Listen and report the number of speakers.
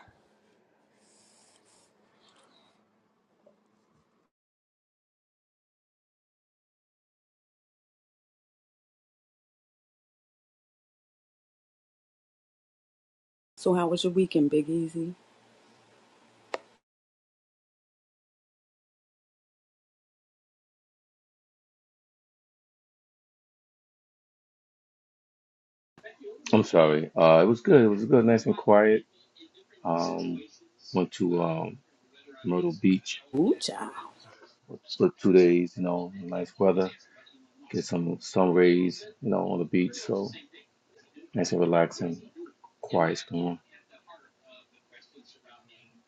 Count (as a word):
two